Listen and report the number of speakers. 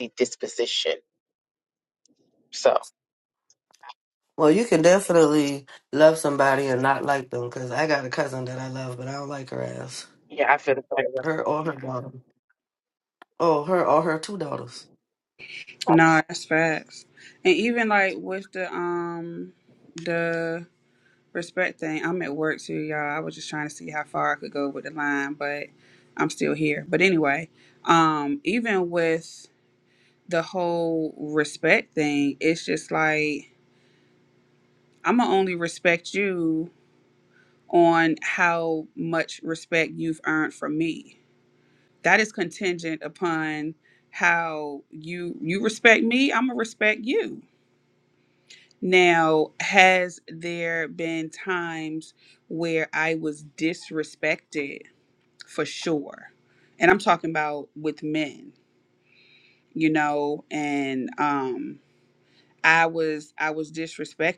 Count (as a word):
three